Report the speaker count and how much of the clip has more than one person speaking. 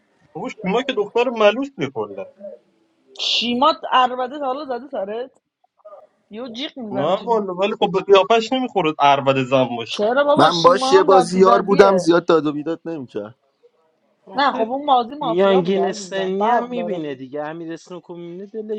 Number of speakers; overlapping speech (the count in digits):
4, about 24%